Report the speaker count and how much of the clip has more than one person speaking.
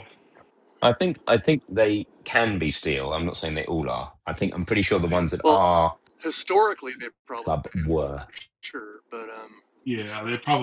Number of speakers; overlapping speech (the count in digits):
3, about 6%